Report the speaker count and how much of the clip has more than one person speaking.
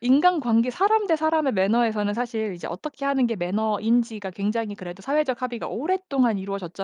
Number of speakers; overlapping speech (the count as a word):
one, no overlap